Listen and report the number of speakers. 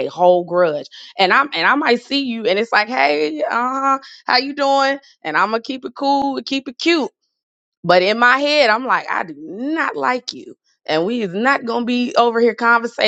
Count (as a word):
one